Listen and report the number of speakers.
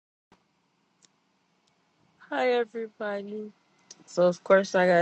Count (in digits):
1